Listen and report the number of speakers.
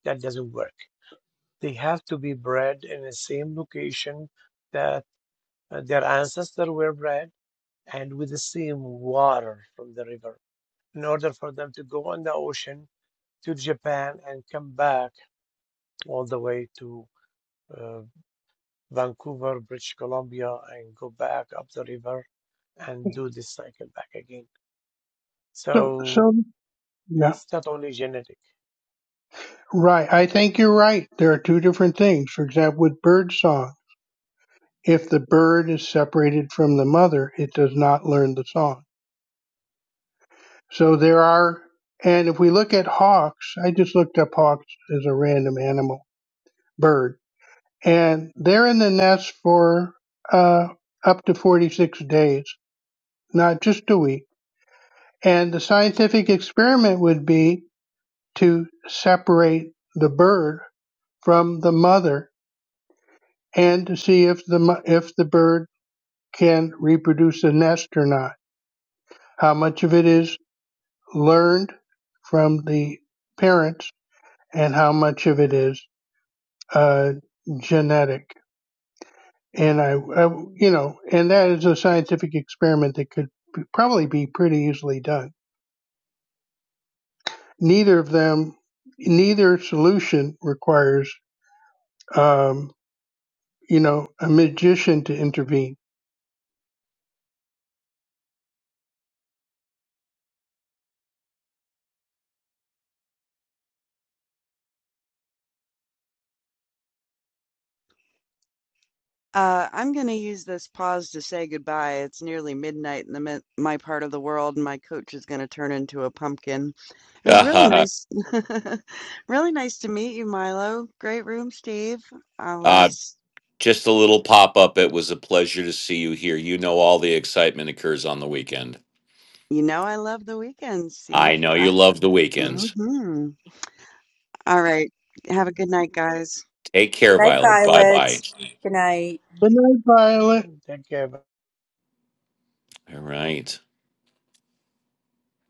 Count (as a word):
five